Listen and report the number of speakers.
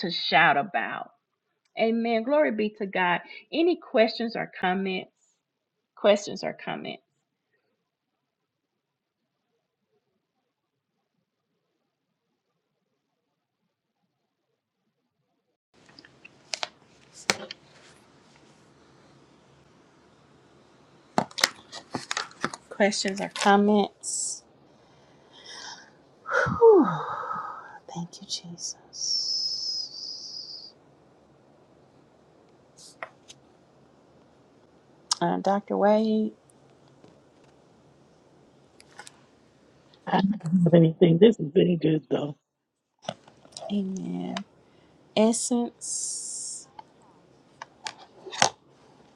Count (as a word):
two